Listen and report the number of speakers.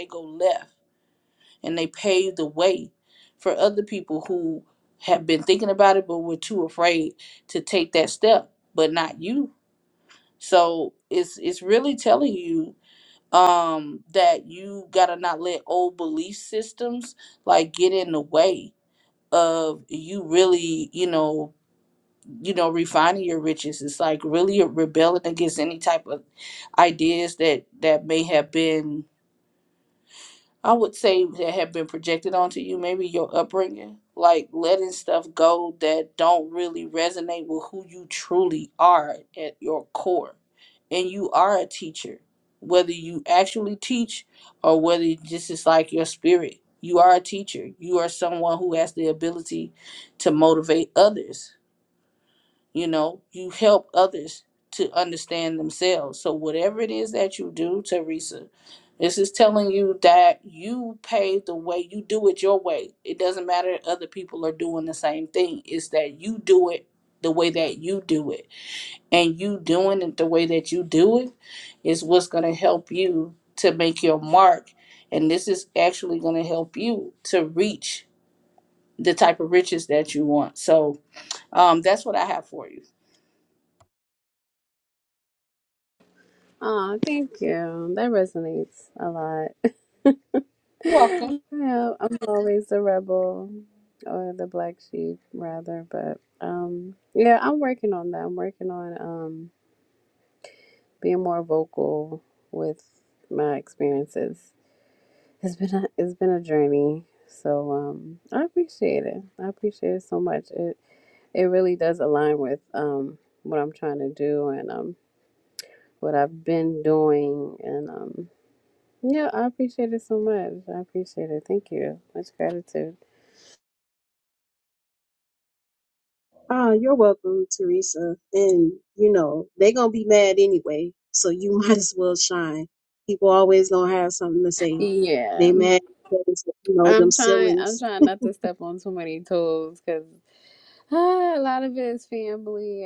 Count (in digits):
3